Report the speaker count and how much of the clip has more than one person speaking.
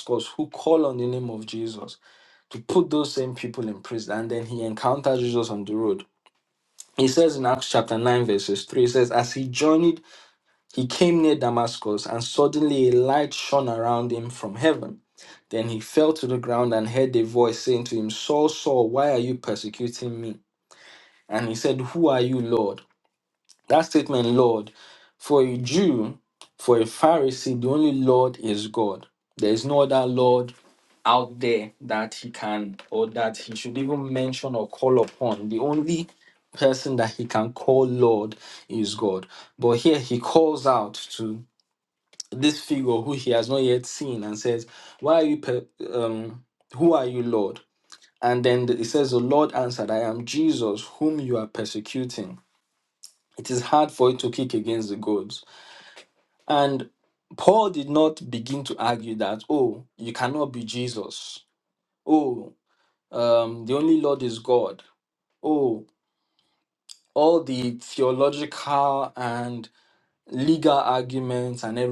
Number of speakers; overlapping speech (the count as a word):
one, no overlap